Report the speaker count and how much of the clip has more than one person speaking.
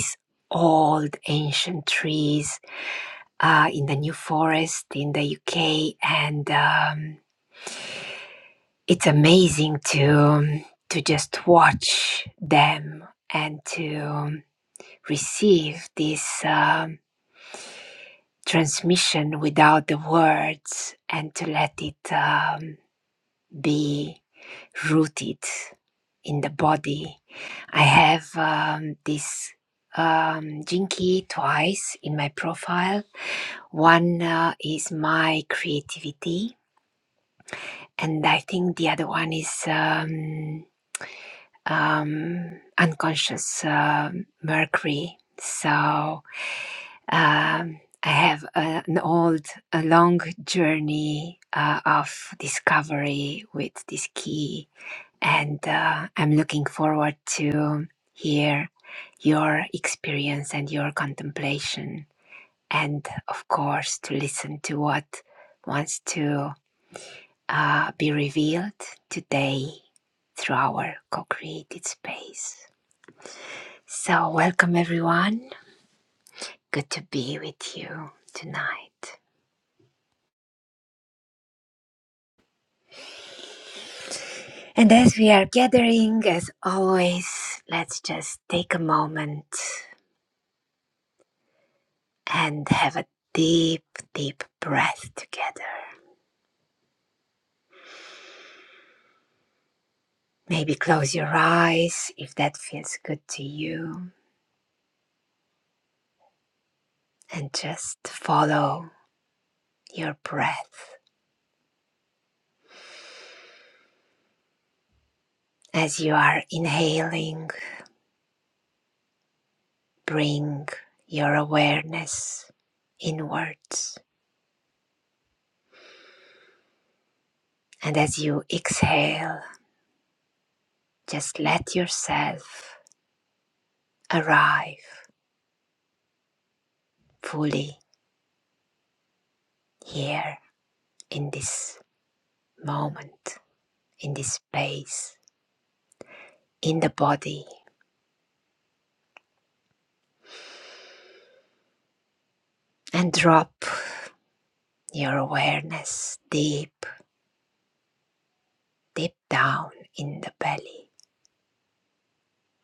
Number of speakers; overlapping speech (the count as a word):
one, no overlap